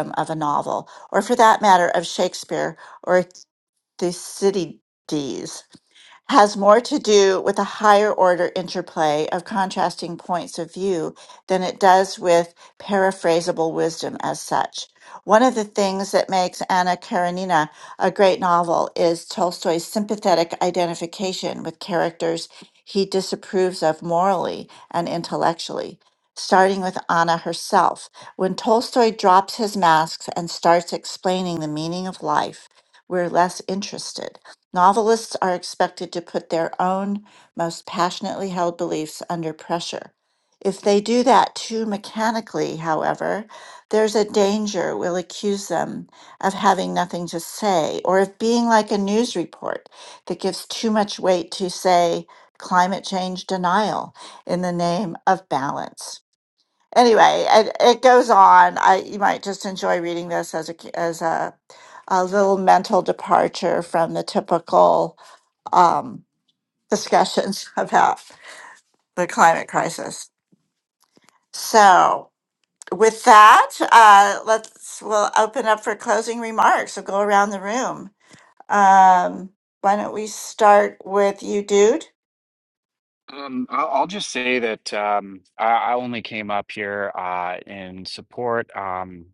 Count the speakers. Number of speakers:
2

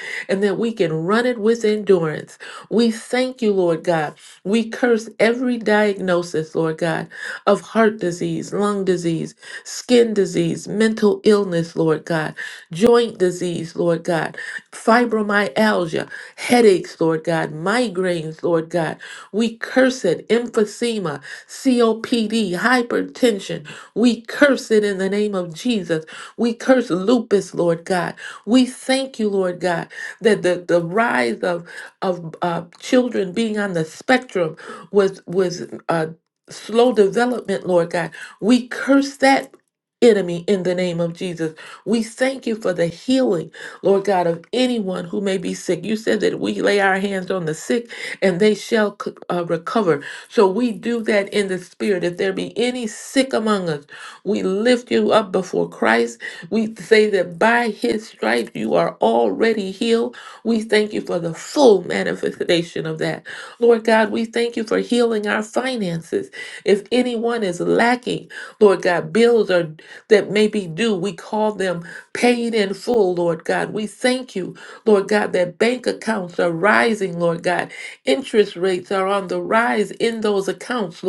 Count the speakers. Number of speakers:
1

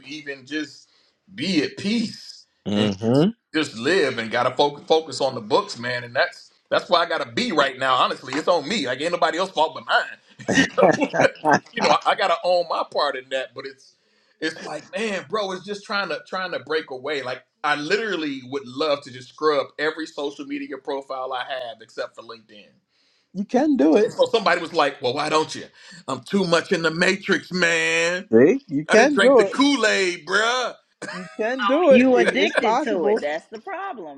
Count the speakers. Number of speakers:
3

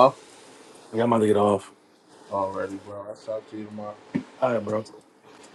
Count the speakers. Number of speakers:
2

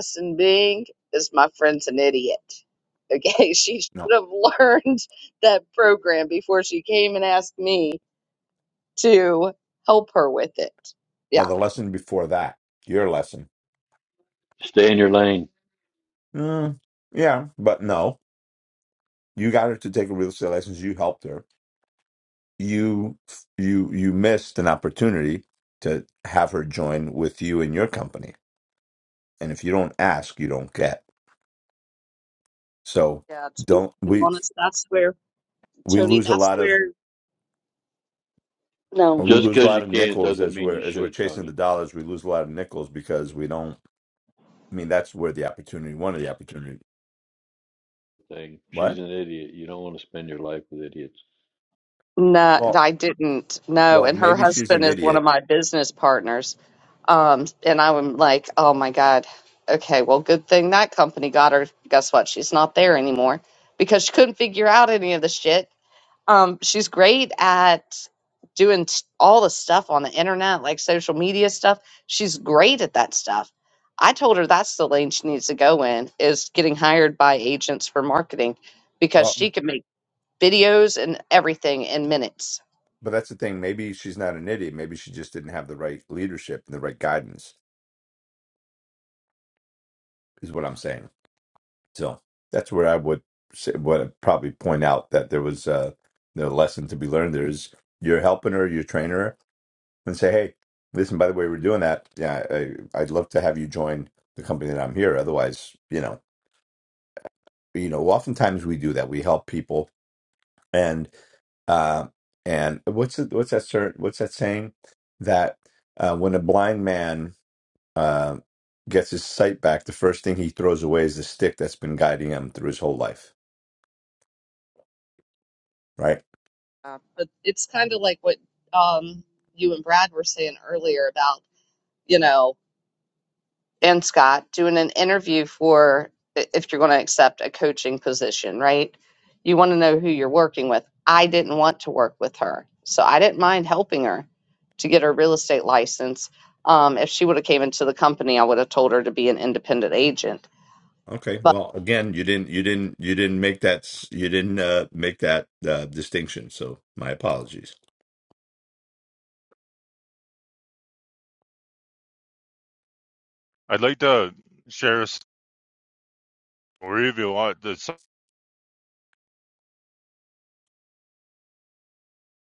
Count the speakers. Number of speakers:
4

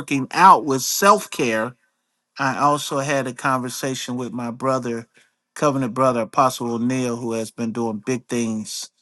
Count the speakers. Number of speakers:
1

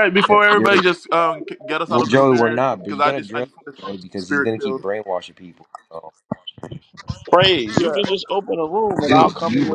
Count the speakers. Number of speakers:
3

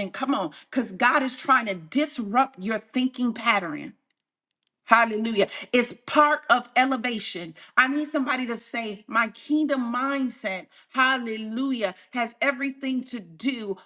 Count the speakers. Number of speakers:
1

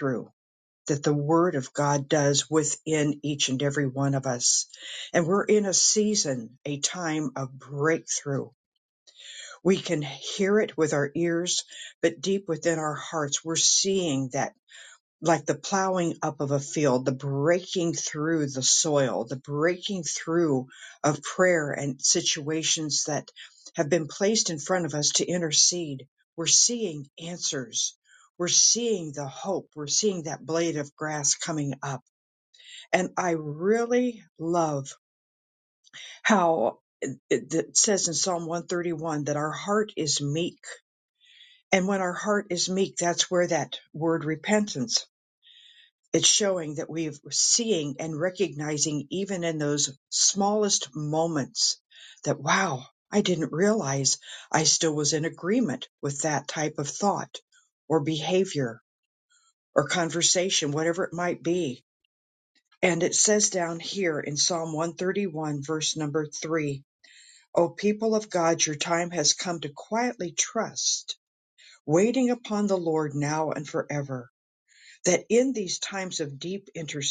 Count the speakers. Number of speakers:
1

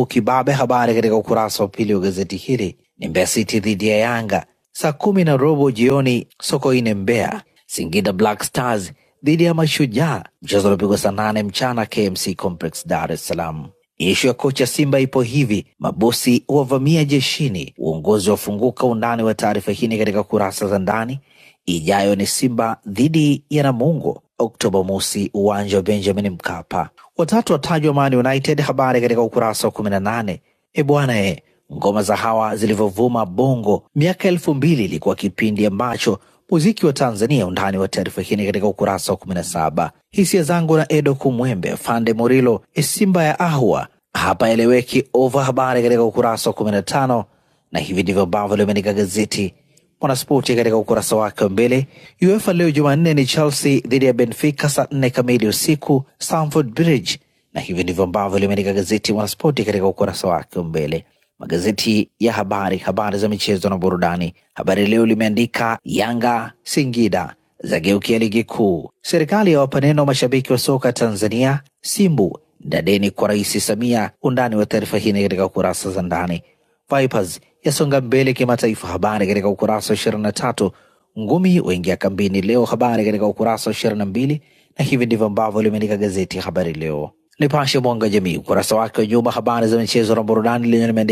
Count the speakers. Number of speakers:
1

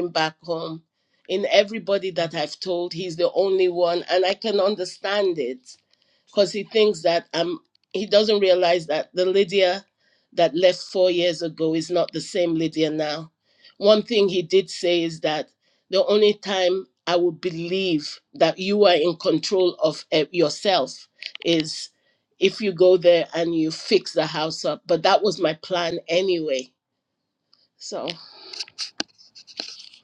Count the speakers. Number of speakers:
1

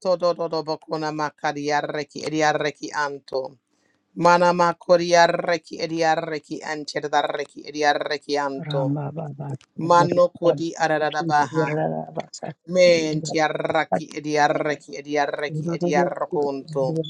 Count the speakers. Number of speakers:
2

